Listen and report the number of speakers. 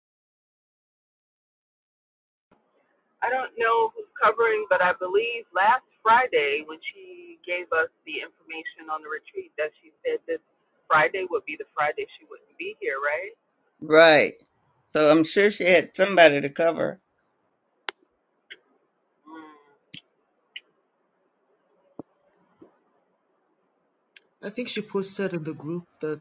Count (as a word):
three